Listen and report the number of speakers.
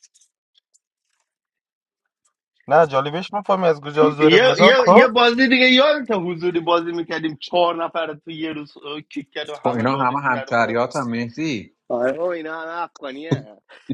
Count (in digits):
4